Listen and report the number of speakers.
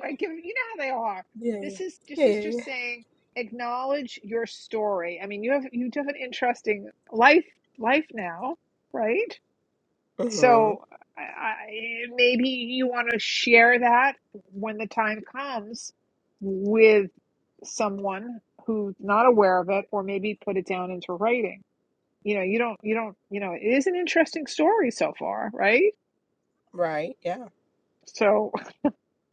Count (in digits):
2